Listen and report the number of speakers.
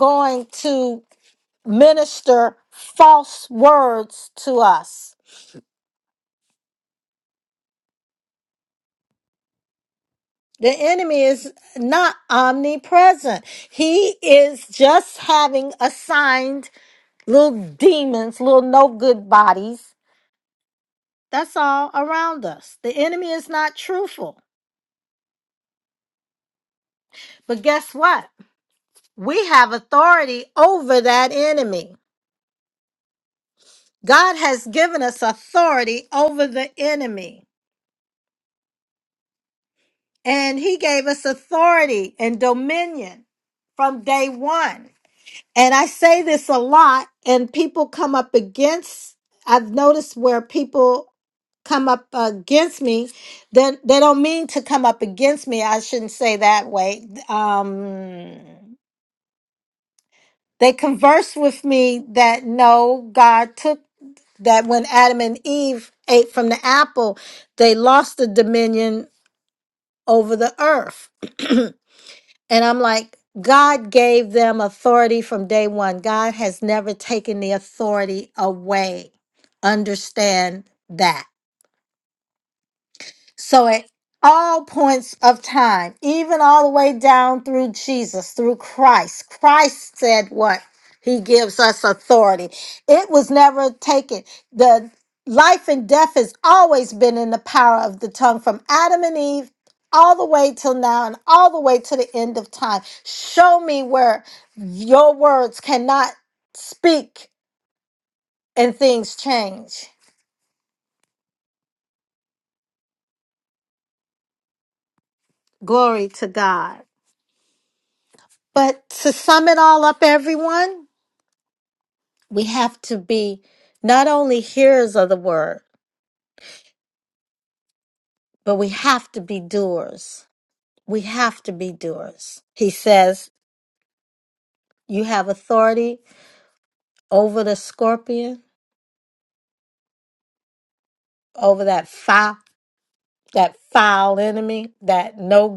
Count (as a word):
one